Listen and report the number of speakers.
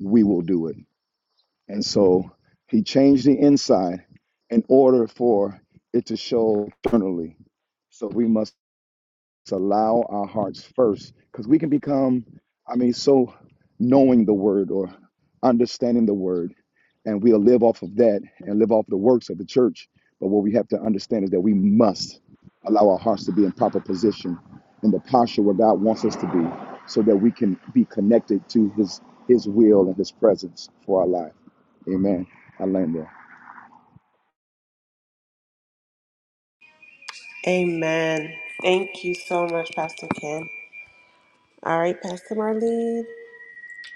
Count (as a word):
two